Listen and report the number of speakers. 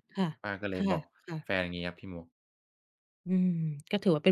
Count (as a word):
two